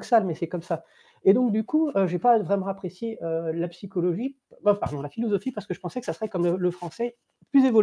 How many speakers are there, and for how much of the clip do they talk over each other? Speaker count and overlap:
1, no overlap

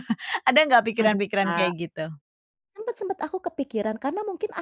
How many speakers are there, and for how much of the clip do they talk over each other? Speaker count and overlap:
2, about 16%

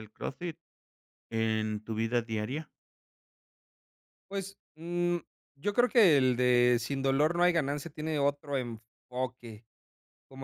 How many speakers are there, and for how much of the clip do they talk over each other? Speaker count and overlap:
2, no overlap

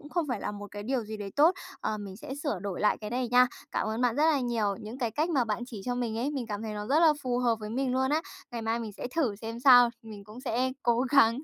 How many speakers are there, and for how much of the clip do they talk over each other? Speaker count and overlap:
1, no overlap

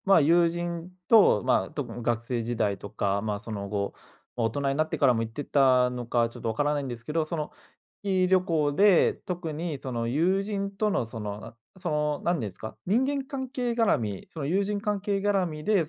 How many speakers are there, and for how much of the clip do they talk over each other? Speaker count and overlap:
1, no overlap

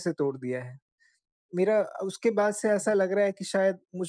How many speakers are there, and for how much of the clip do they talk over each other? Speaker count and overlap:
1, no overlap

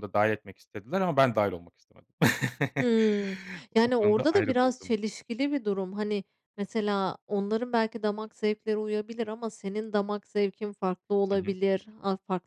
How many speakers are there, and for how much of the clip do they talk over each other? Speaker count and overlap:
2, about 10%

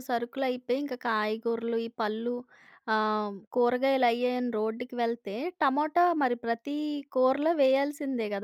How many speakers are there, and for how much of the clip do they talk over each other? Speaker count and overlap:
1, no overlap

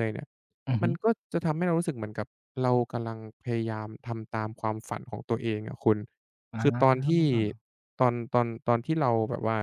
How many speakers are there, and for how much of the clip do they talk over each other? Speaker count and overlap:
2, about 7%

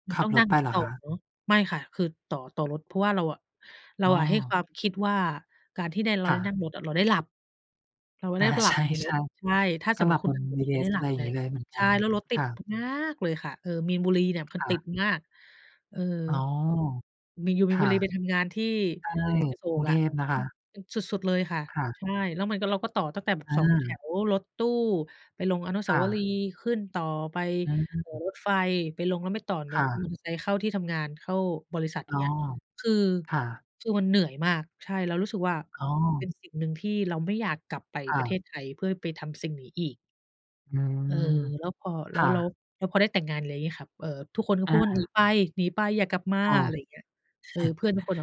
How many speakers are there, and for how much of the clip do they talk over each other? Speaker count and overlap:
2, about 15%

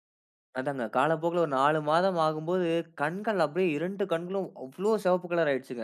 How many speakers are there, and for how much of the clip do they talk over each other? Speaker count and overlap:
1, no overlap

